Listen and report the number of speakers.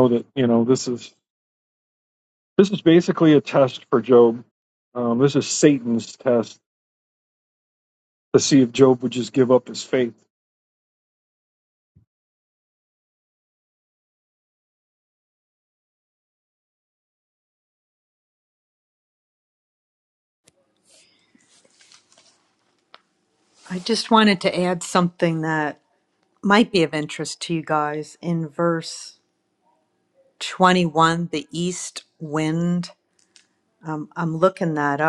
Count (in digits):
2